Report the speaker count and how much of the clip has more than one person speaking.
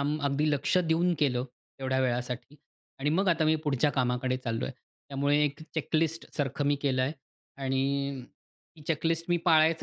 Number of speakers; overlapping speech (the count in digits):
1, no overlap